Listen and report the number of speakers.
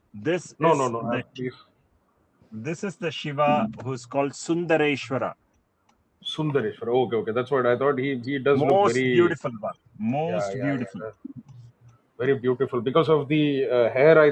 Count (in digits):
2